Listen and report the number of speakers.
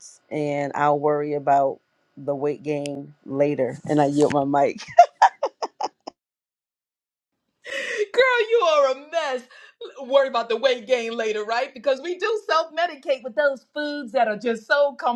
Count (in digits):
2